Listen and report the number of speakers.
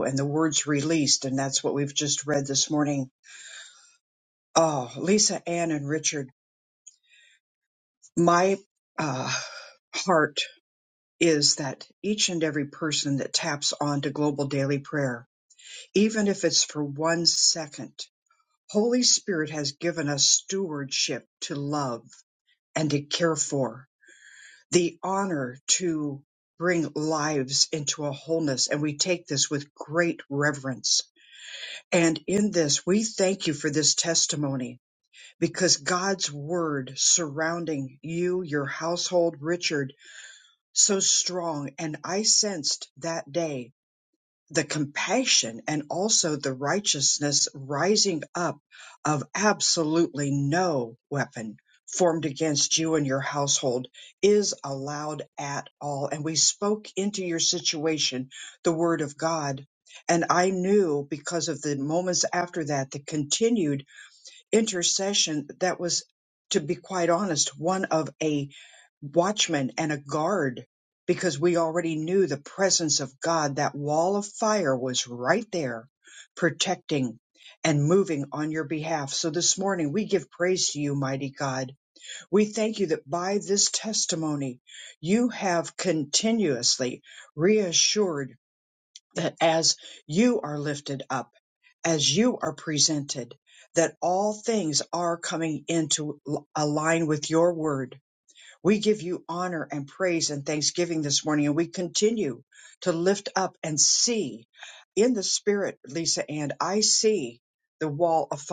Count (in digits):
1